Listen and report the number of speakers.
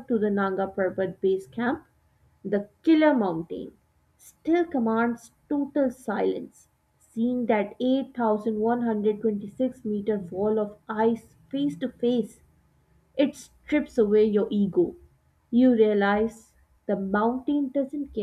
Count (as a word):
one